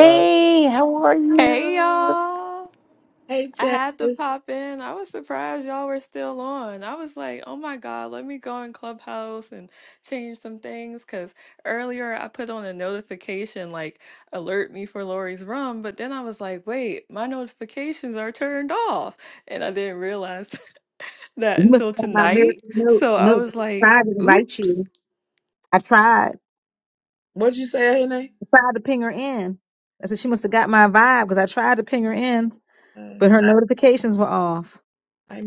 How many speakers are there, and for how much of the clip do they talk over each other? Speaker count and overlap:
four, about 13%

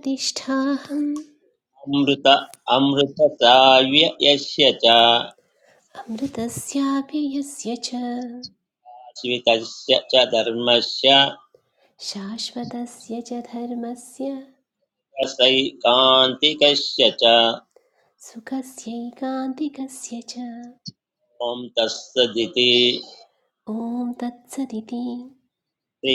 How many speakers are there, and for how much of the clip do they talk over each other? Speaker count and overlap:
two, no overlap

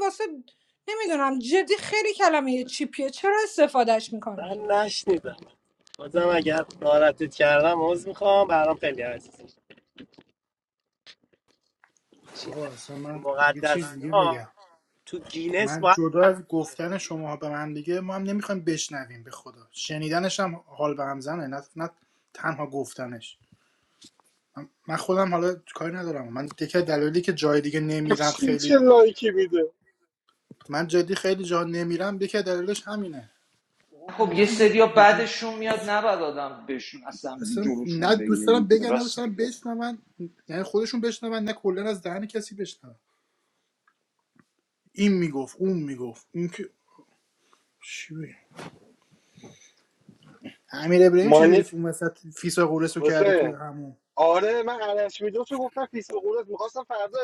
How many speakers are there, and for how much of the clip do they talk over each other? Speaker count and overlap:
five, about 11%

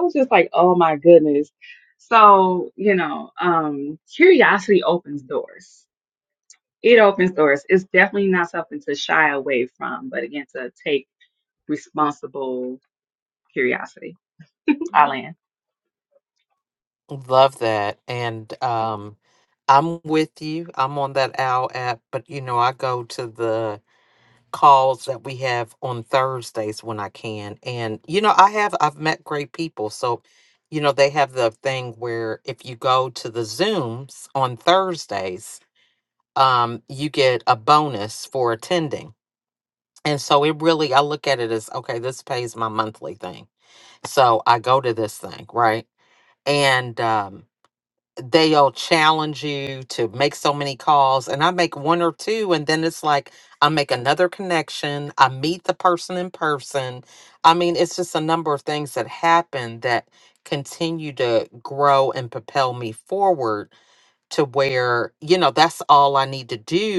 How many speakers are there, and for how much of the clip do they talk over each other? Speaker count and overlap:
two, no overlap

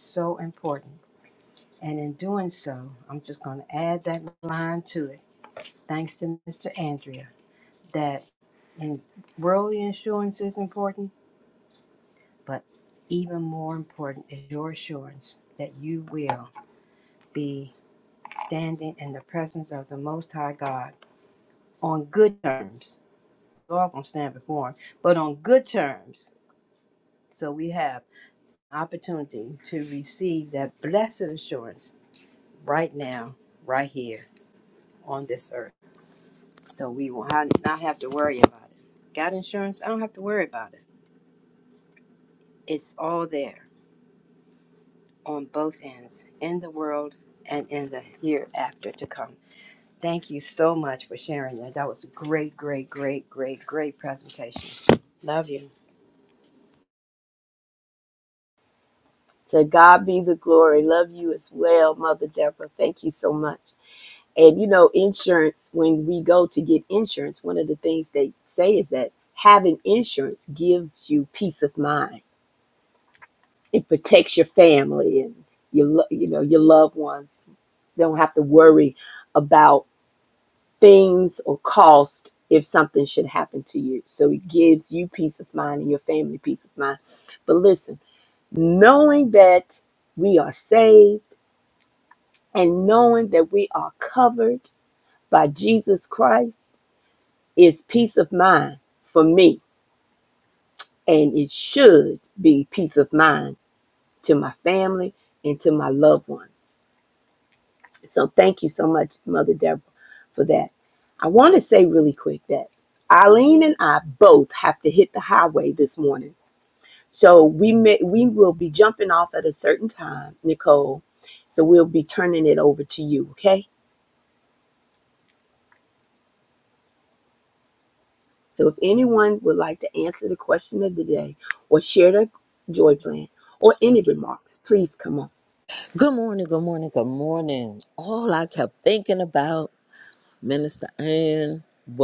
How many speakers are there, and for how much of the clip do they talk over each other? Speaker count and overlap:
three, no overlap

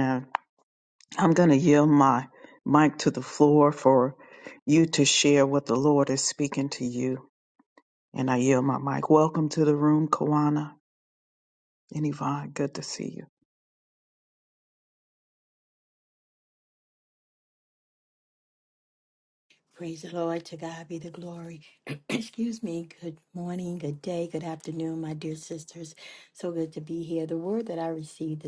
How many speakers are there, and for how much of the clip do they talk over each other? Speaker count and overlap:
two, no overlap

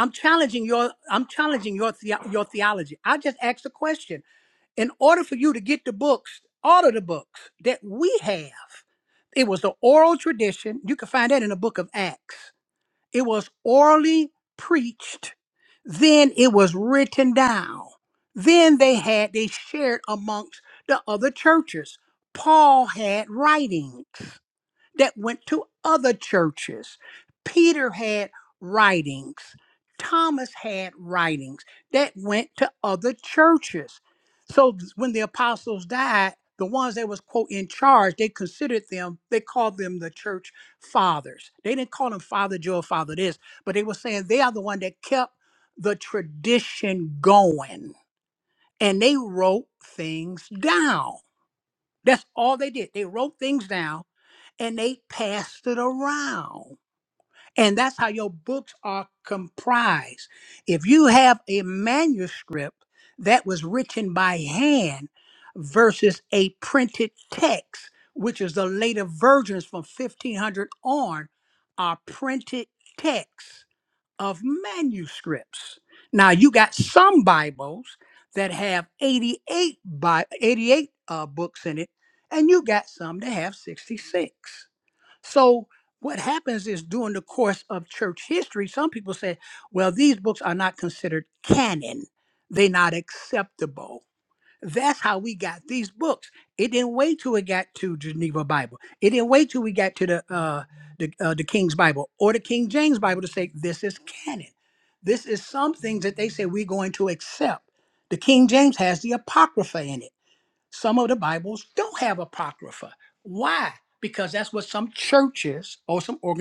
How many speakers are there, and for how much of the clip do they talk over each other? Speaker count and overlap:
one, no overlap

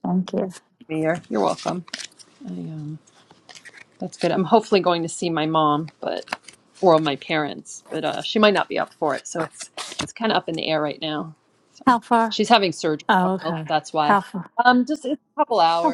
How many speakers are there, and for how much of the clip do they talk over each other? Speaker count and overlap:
two, about 8%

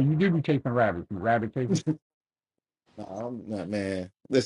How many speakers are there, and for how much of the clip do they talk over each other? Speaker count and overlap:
two, no overlap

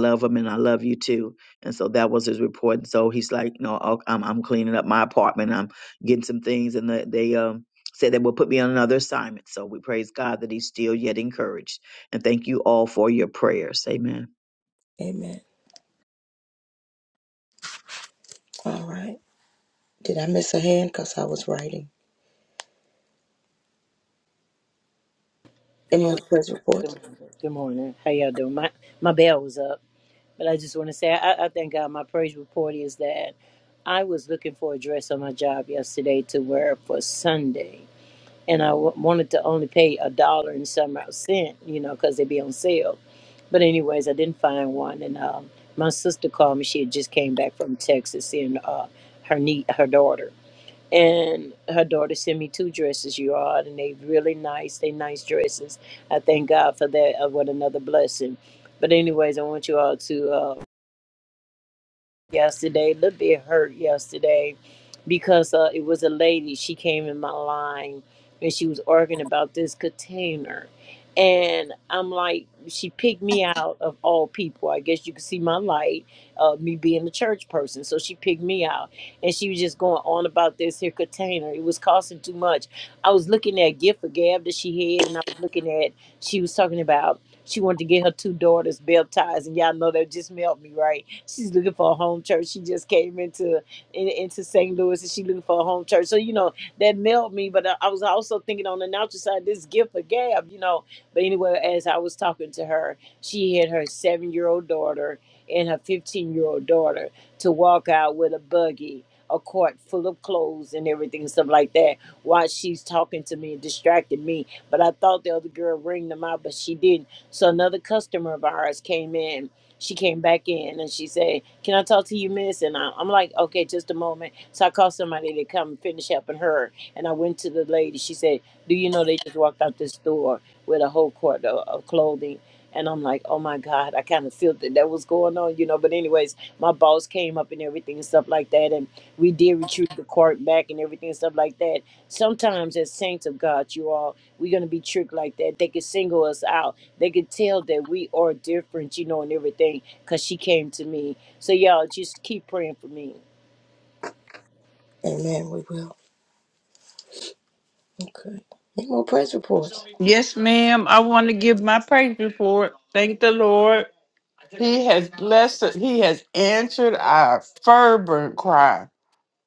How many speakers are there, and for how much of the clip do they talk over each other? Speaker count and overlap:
four, under 1%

